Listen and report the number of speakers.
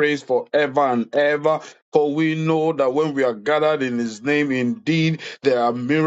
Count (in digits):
1